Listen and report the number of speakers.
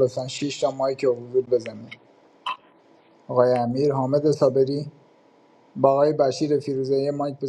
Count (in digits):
1